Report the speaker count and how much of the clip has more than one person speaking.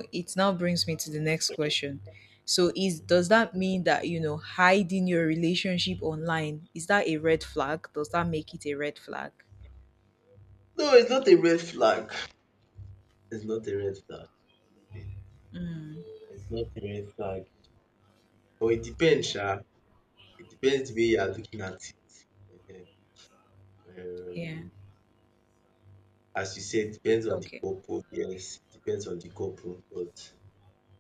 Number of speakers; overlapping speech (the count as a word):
two, about 2%